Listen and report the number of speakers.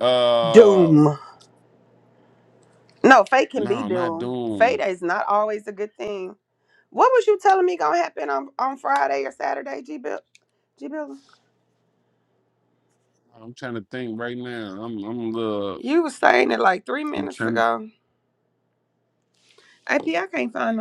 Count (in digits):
2